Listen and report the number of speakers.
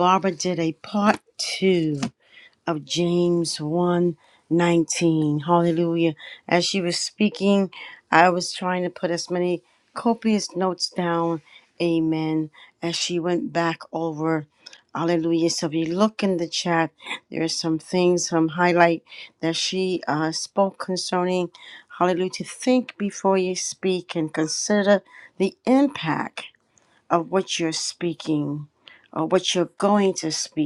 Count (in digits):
1